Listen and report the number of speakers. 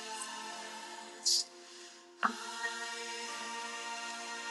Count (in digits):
0